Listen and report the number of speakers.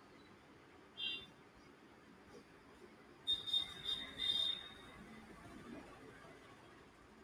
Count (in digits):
0